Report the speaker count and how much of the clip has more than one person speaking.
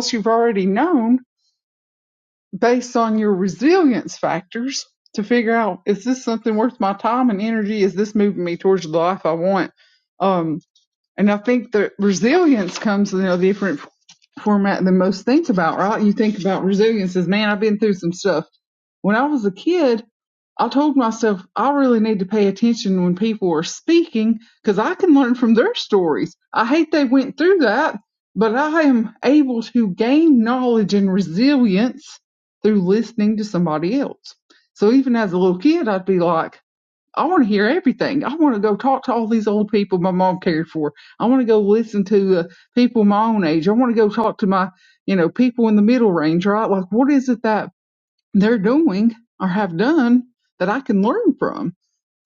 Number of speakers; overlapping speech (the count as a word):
one, no overlap